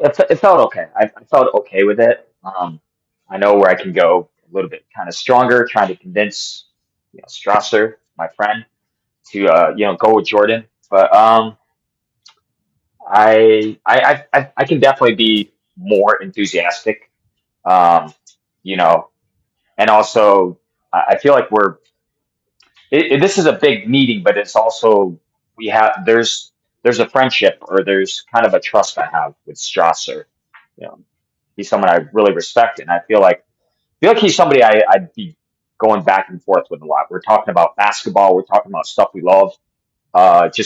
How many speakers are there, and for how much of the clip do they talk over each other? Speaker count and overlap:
one, no overlap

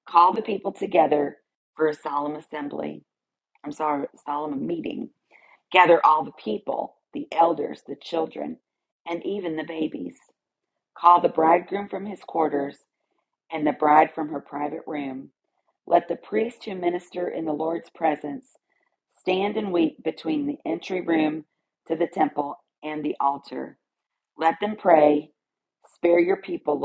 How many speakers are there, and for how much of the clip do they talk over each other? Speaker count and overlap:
one, no overlap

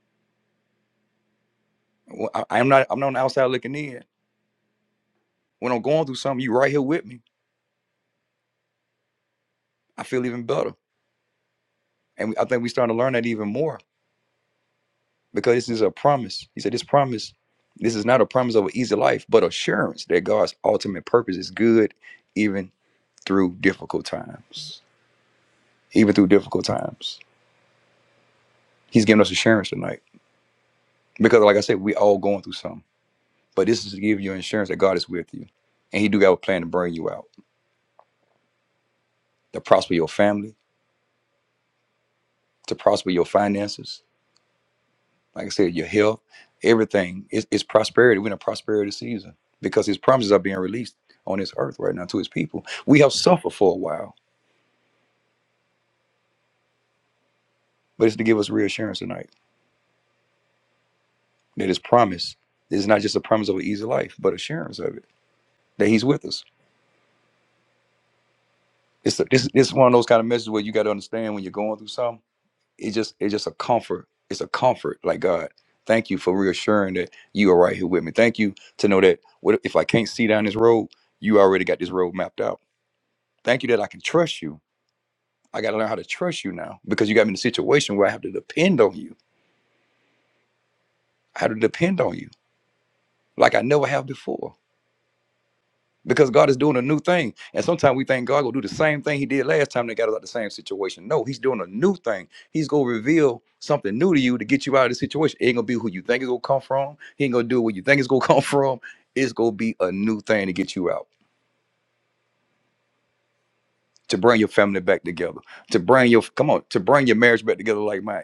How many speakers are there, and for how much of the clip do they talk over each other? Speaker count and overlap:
one, no overlap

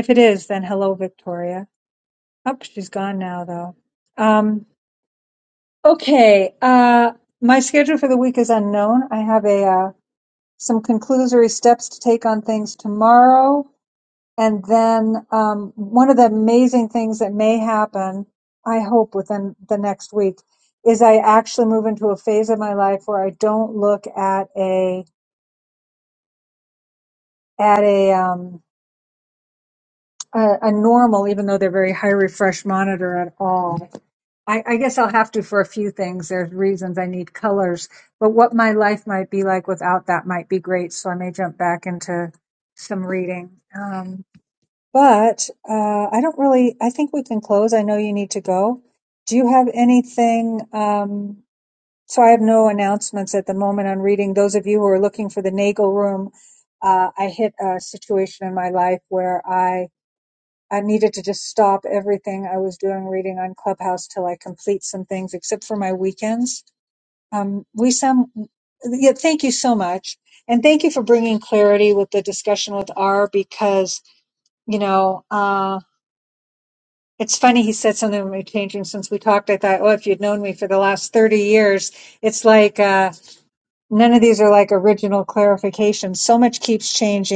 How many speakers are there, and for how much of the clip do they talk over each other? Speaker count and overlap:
one, no overlap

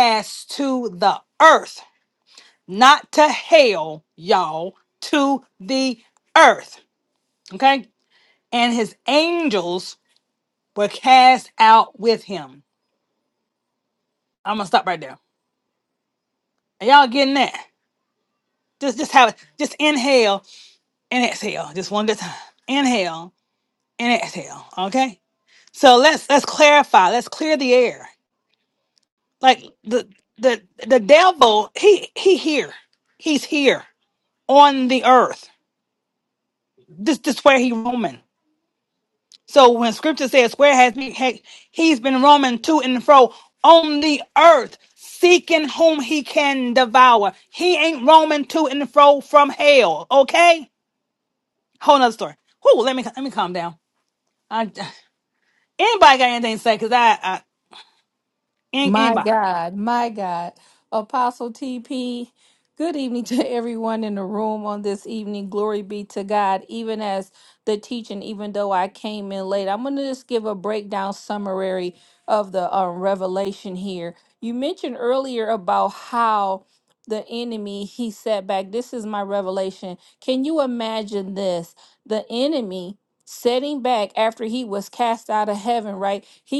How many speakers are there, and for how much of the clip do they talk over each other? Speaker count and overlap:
two, about 1%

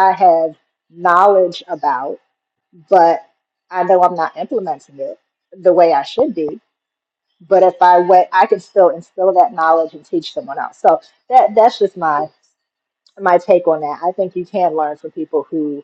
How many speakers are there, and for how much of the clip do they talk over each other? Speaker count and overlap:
one, no overlap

